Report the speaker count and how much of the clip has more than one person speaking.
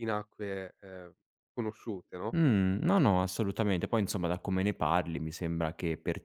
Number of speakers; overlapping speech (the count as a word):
two, no overlap